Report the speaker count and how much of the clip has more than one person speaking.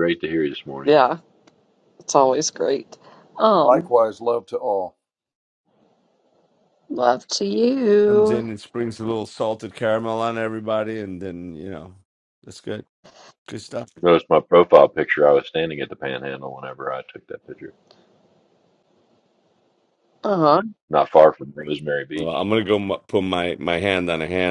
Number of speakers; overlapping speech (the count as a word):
four, about 3%